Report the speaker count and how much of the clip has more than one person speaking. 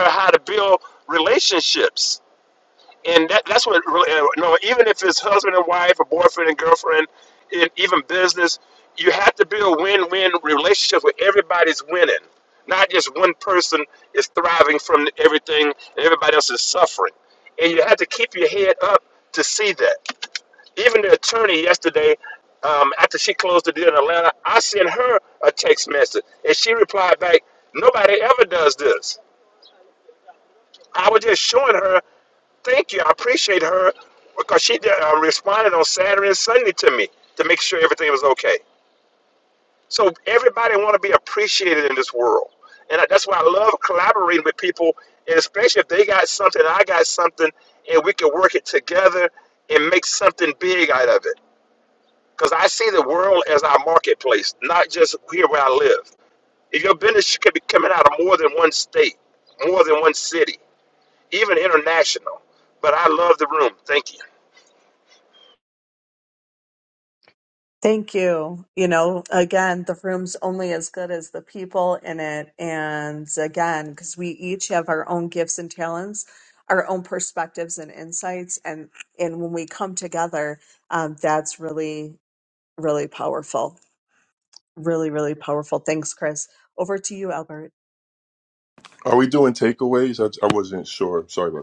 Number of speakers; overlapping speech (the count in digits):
3, no overlap